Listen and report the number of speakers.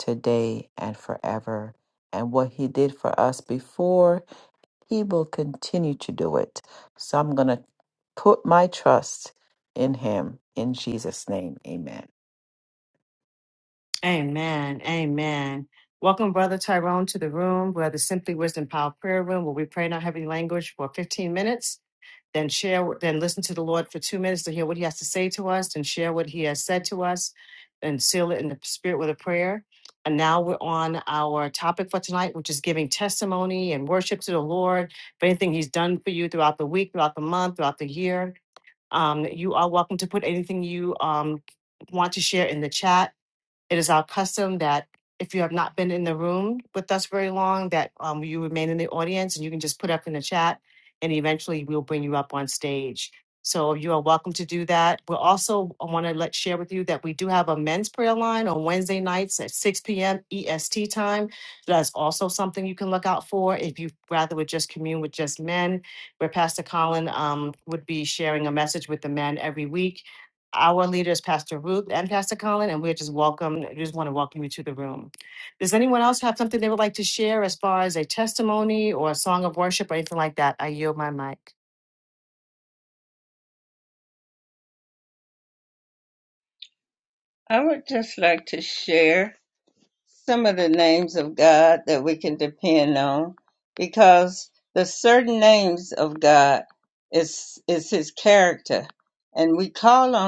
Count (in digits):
3